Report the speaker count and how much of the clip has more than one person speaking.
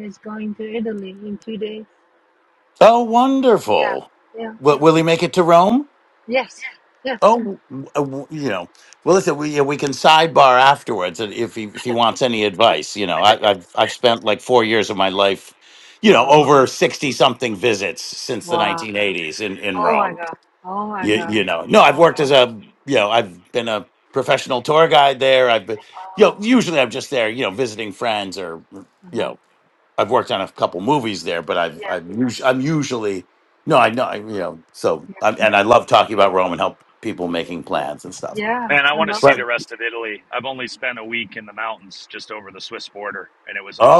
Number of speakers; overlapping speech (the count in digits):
3, about 9%